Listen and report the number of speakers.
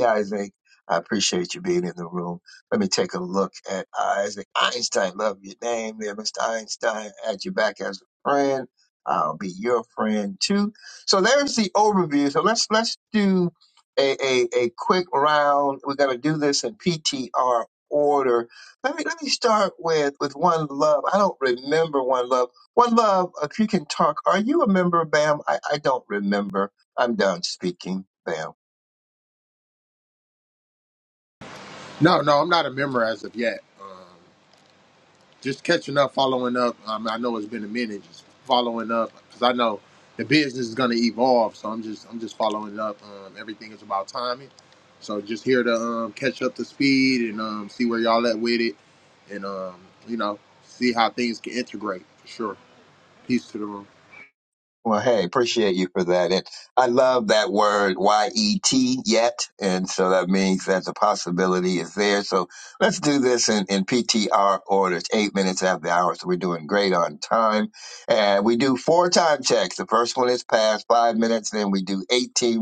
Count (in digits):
2